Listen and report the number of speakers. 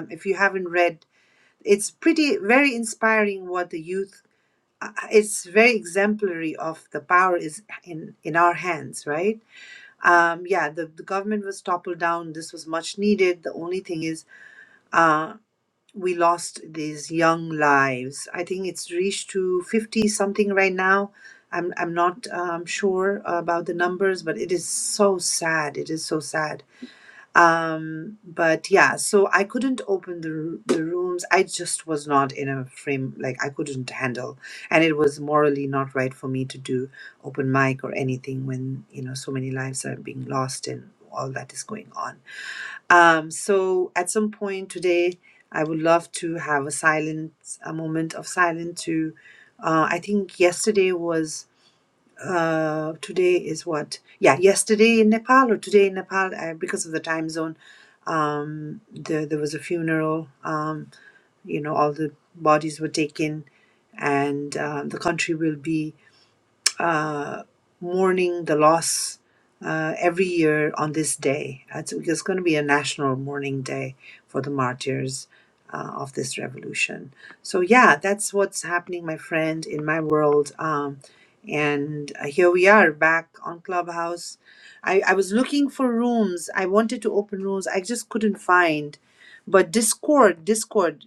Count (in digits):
1